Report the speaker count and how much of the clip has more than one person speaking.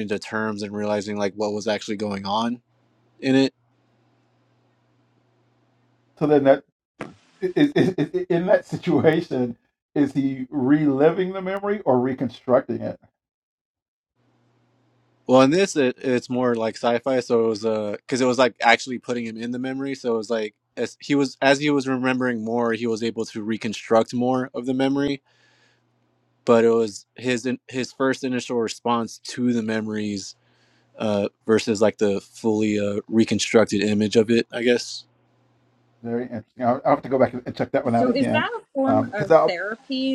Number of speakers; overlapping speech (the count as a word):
three, about 3%